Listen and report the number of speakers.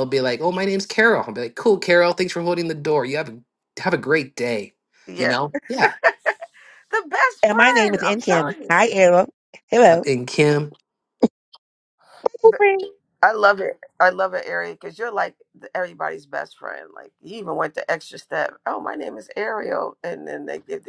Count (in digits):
3